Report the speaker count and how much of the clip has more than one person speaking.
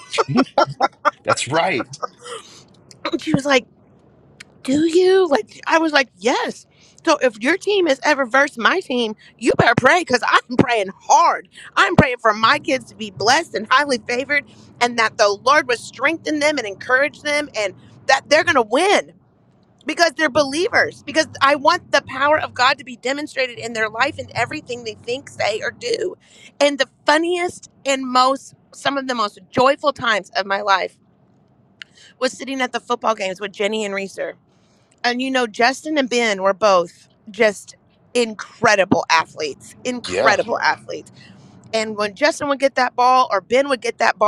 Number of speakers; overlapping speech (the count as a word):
two, about 1%